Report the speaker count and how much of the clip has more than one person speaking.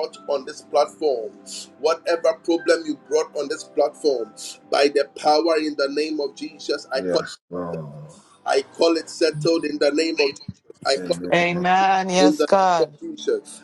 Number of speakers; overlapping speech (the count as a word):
three, about 10%